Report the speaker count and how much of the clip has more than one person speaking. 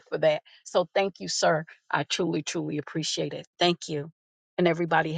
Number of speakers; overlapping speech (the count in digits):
1, no overlap